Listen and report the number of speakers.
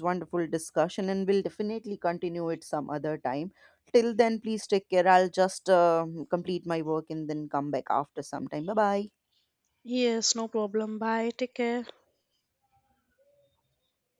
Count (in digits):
2